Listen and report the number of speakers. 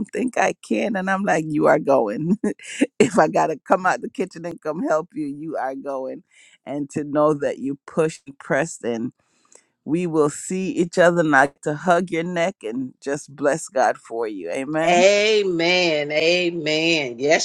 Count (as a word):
two